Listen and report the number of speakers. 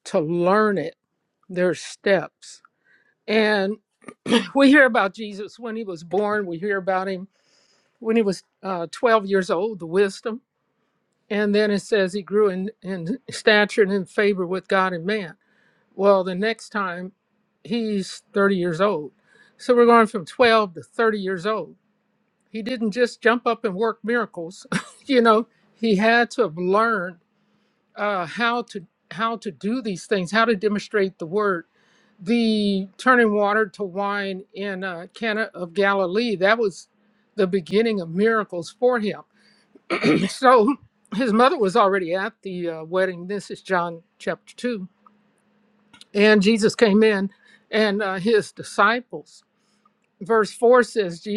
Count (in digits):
1